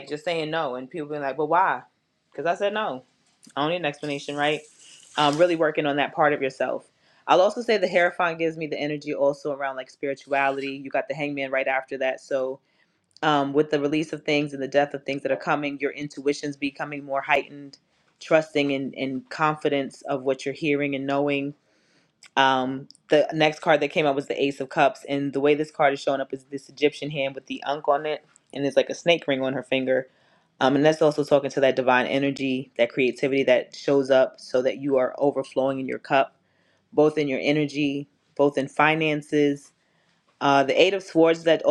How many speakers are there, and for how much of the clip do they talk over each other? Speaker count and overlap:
one, no overlap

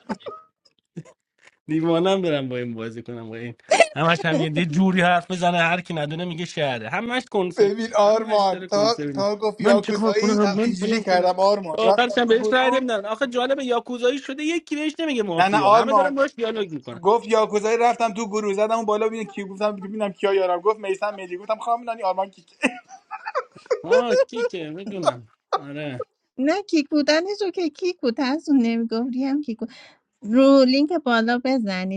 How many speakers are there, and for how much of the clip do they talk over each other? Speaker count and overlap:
three, about 15%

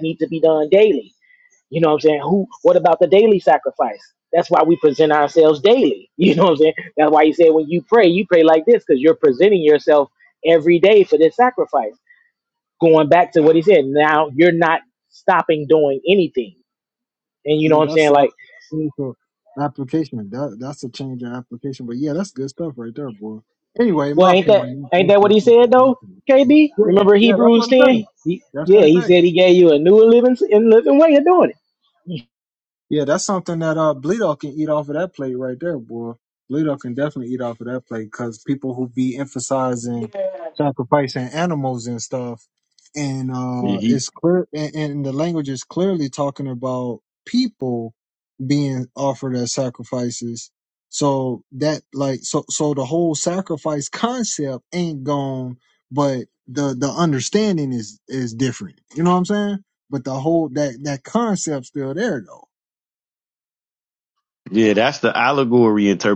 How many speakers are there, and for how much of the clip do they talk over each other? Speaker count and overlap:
three, about 7%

